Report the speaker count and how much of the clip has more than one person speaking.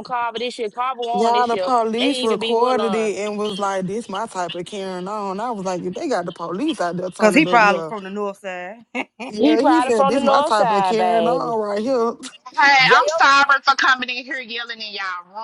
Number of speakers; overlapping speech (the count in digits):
4, about 34%